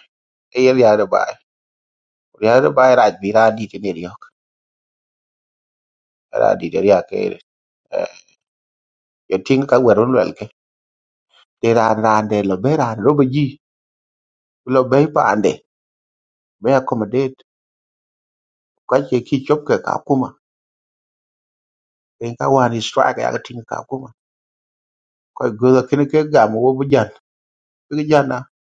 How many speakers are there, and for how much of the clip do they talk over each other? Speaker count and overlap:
1, no overlap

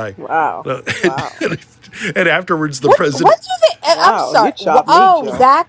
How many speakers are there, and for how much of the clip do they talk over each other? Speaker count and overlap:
3, about 50%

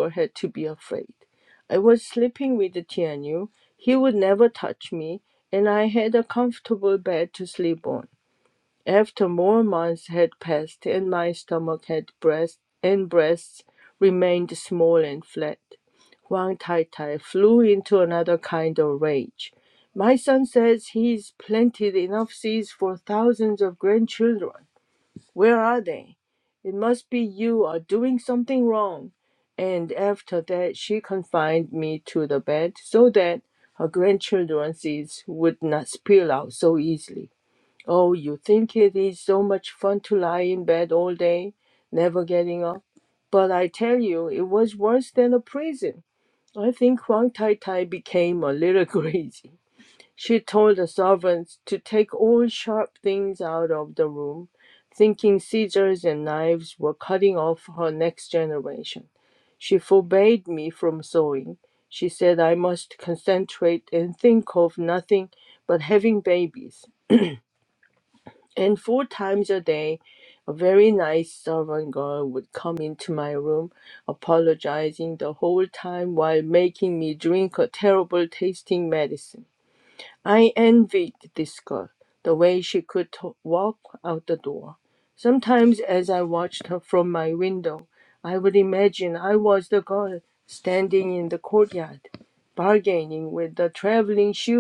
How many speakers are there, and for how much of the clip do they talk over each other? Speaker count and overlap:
1, no overlap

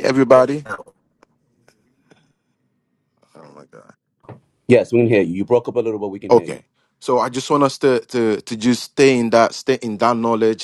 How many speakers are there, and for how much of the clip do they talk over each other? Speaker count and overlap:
2, about 3%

